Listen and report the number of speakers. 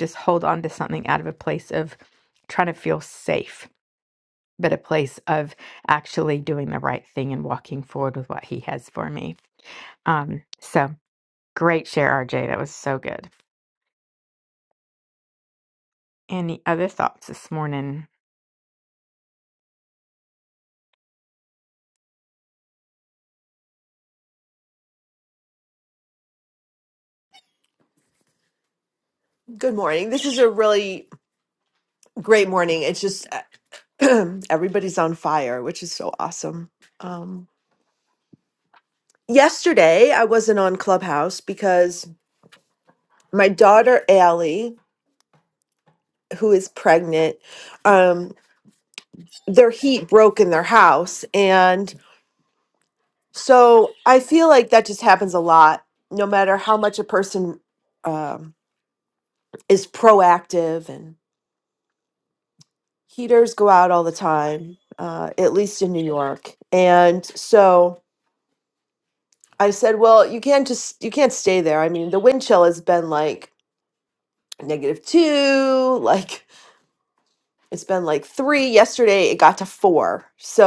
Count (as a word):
two